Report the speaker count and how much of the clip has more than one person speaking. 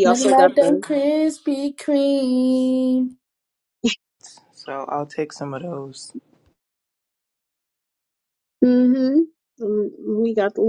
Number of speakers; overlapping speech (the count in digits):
3, about 8%